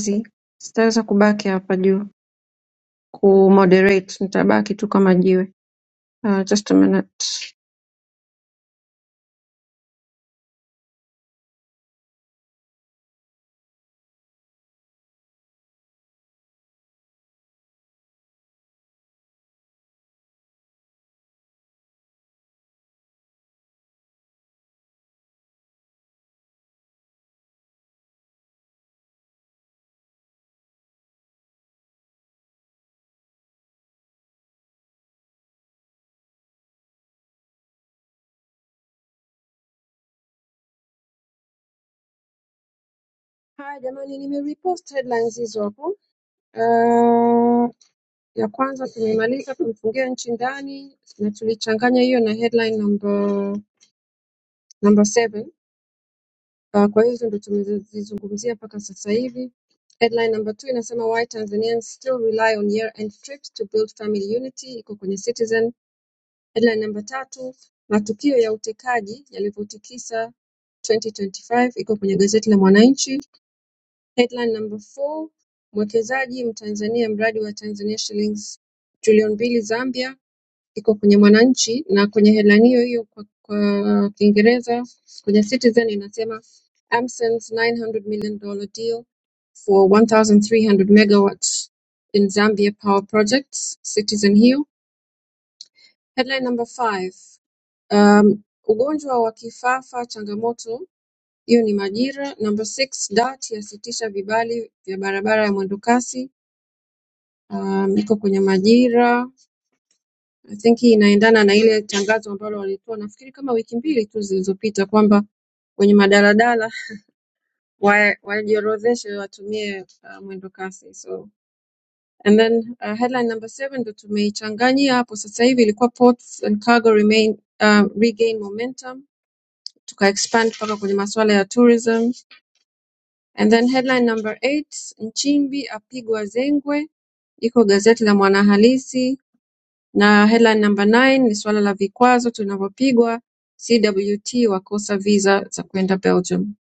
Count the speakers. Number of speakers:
1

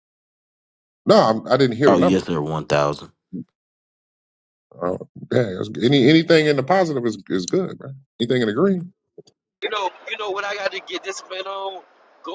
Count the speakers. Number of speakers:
3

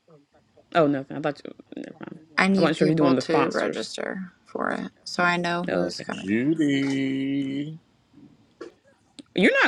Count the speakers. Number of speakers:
3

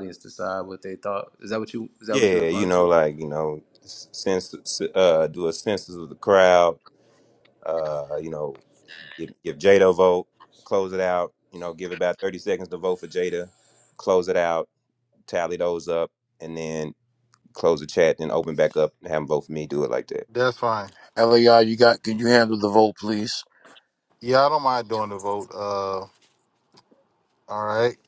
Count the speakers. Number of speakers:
4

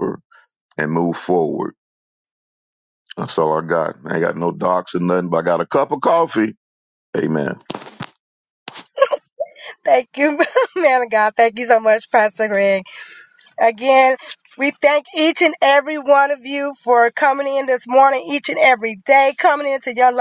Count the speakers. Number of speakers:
2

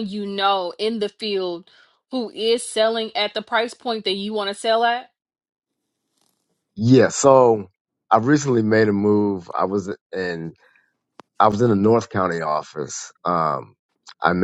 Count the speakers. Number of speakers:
2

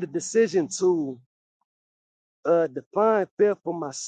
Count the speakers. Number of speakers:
1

